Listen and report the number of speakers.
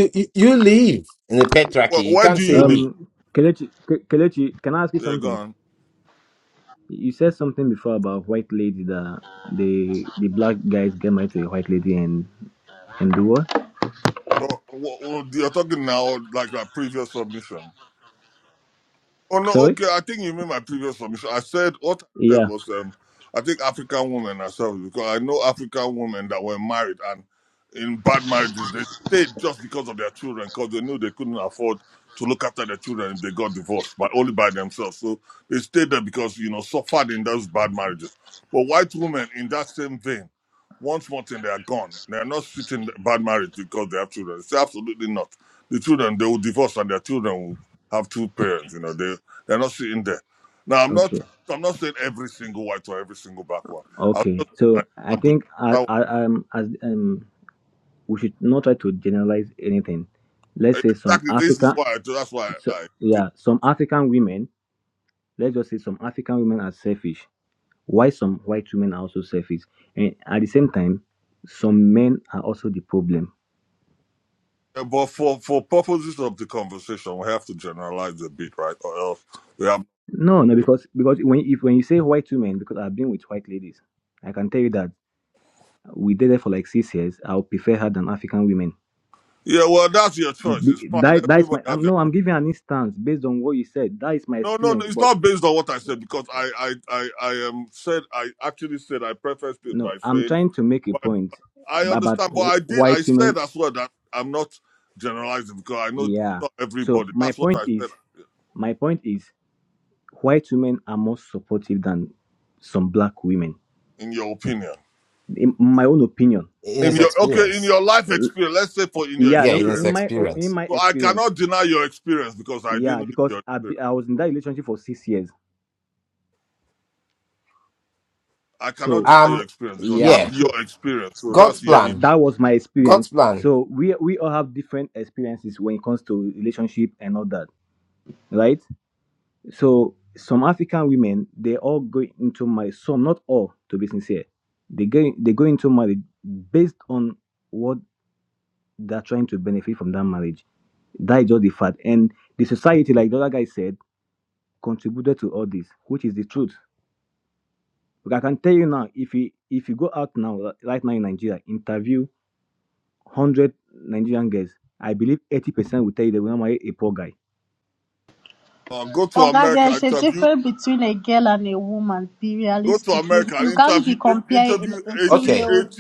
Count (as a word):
four